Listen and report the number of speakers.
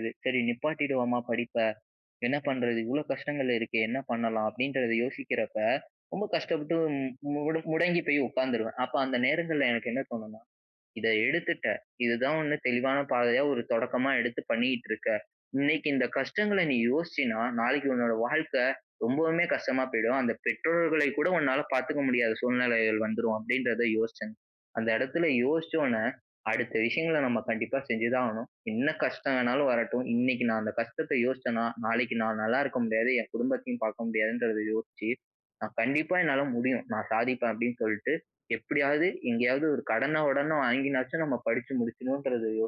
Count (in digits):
1